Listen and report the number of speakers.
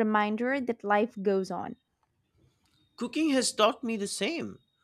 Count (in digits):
2